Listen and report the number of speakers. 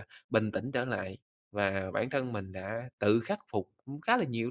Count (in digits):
1